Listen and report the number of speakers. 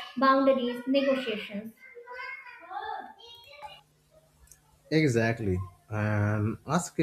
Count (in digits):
2